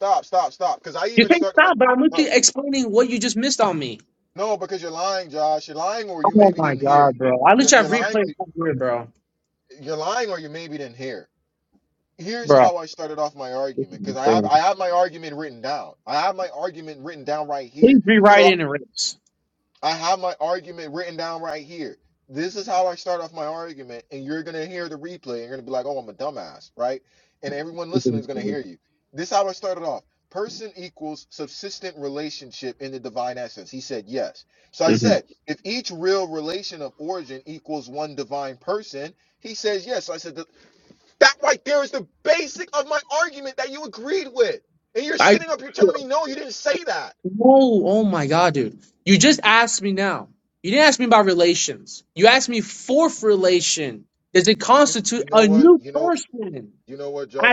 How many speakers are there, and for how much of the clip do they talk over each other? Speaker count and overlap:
two, about 8%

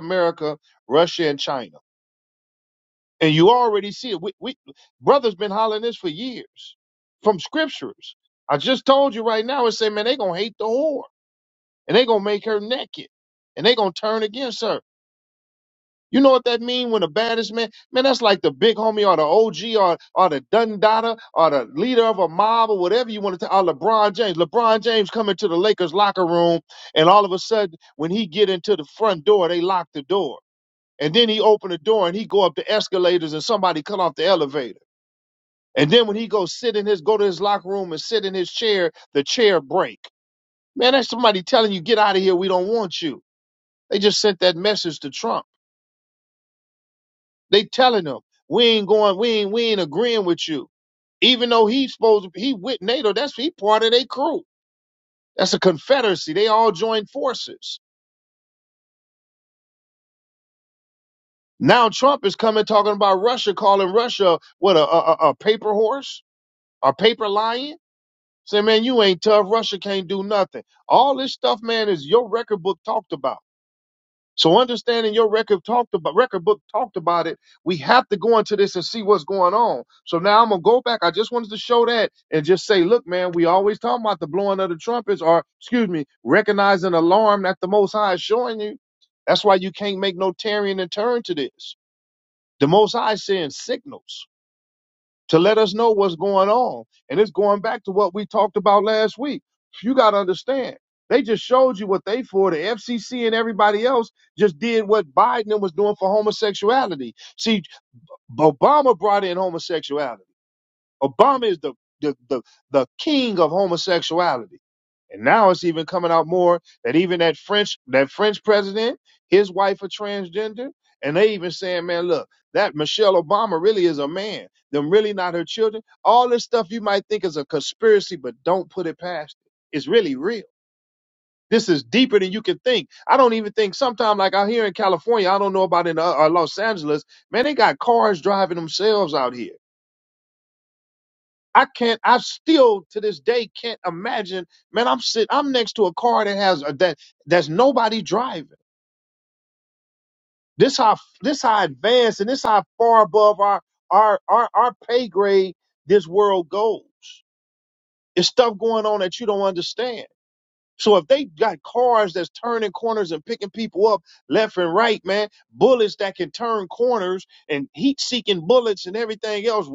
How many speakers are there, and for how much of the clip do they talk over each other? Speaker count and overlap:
one, no overlap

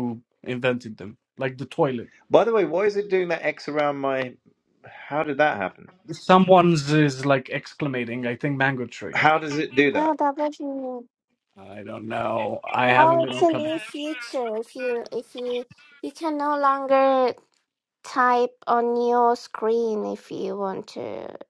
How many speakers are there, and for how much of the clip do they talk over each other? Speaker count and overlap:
three, about 5%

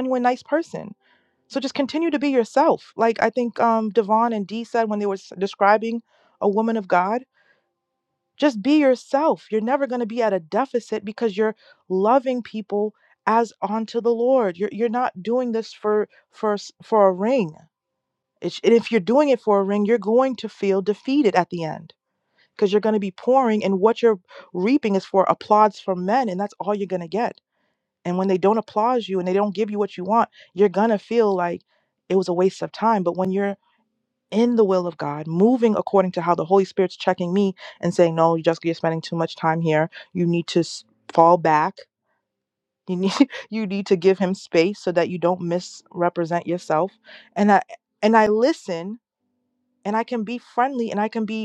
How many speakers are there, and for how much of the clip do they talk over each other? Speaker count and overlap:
one, no overlap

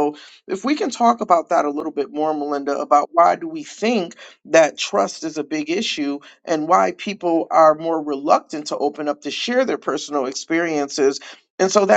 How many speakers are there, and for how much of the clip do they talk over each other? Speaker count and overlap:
one, no overlap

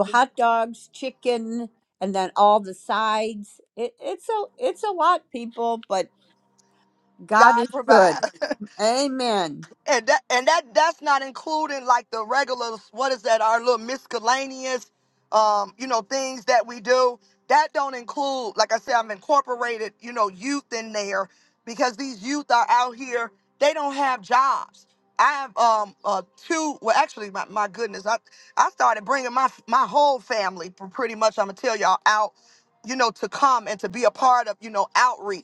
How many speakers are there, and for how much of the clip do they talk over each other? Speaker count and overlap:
two, about 2%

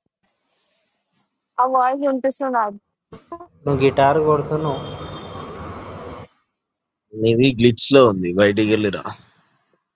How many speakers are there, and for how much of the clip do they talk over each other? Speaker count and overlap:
three, no overlap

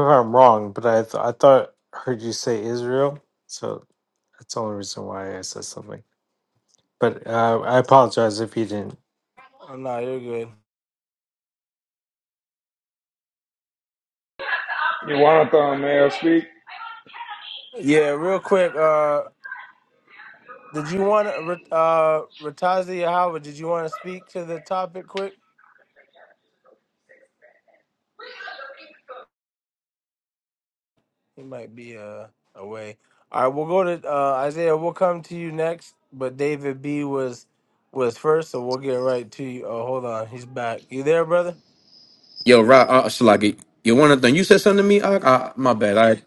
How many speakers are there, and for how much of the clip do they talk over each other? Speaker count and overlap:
four, no overlap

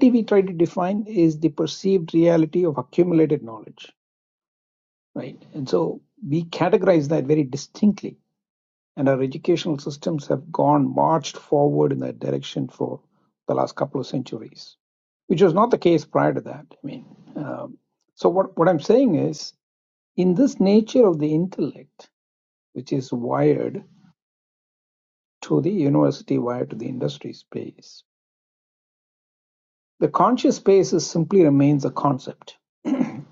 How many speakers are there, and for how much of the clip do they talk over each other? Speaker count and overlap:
one, no overlap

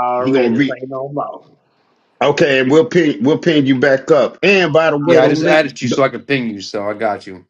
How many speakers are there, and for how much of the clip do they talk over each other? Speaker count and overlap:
three, about 15%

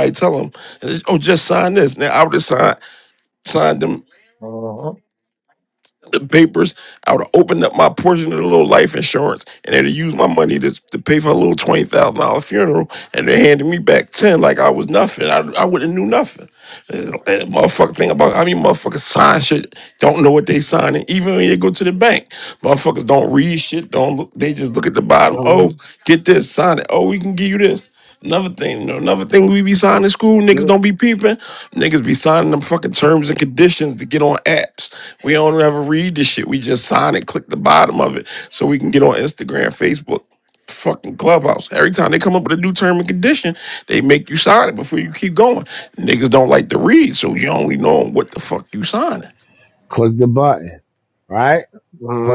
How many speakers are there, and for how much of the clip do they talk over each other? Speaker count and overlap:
three, about 1%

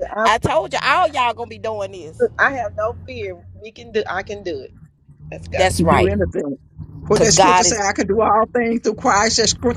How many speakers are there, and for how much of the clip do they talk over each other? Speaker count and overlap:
three, about 13%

